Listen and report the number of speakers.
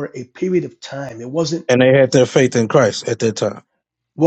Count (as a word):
two